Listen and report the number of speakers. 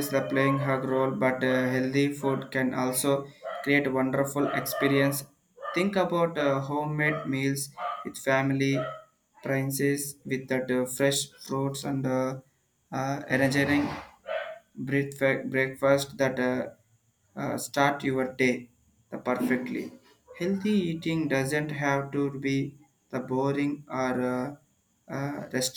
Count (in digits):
1